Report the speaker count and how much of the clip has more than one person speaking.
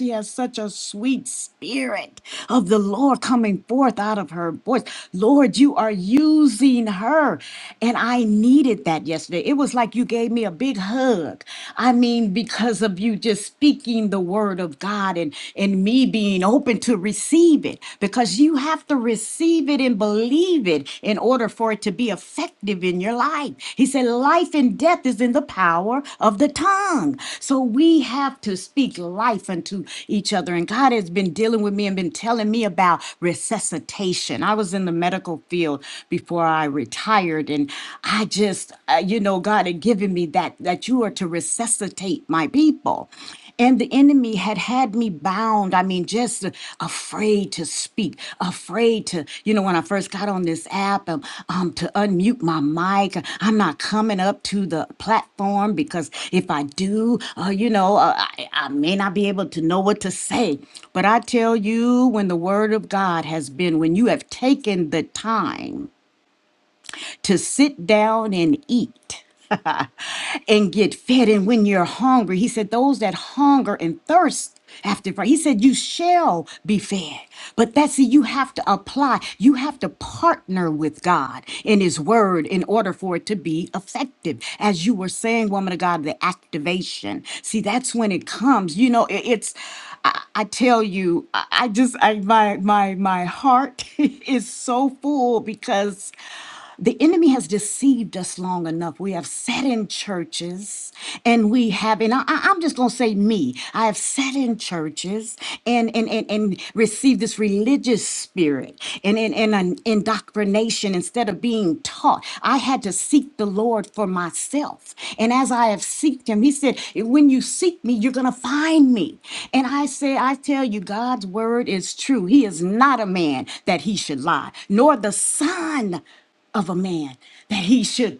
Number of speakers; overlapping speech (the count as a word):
one, no overlap